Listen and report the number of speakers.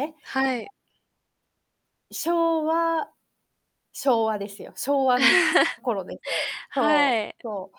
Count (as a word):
two